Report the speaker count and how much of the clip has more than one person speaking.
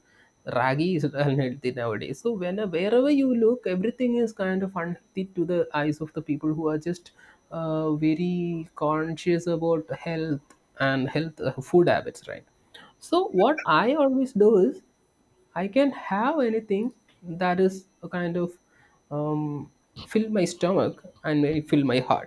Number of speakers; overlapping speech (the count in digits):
1, no overlap